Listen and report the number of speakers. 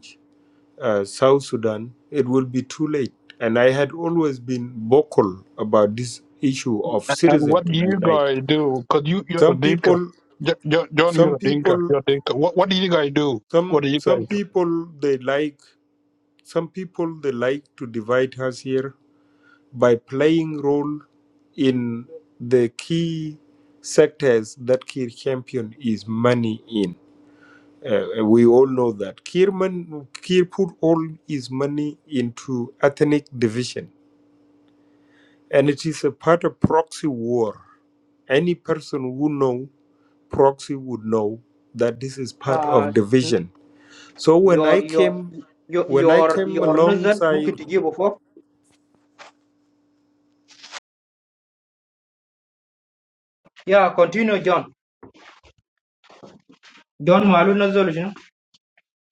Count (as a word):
three